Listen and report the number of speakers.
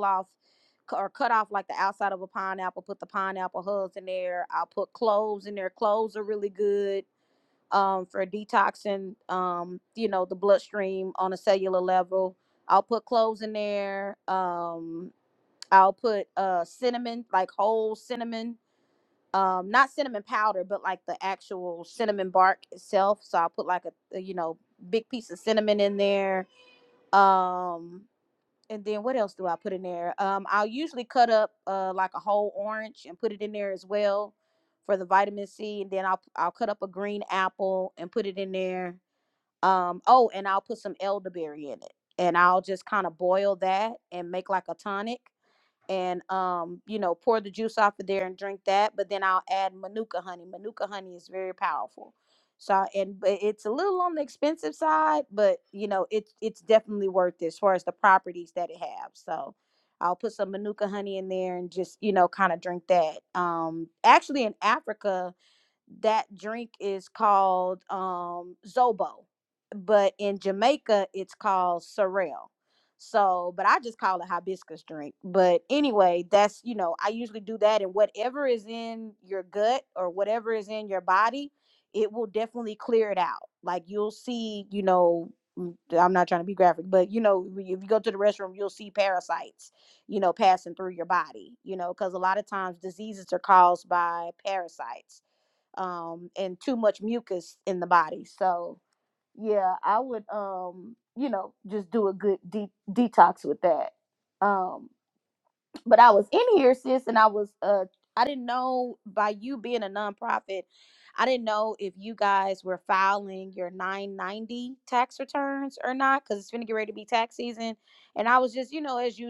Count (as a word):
one